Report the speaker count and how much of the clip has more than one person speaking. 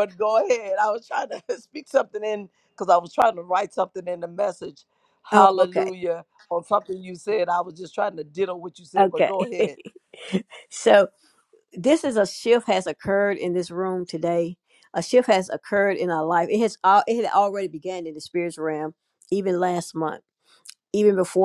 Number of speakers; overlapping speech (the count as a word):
two, about 5%